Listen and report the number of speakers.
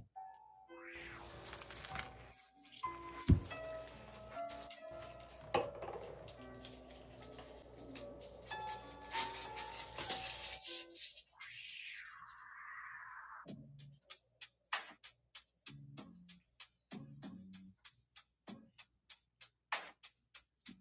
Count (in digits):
0